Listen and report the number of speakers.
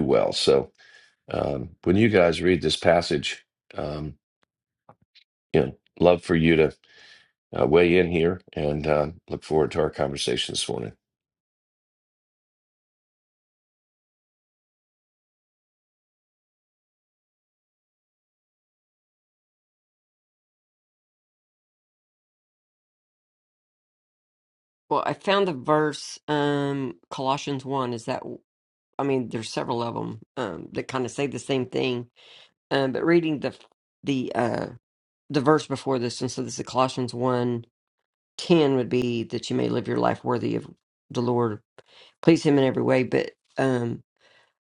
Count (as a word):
two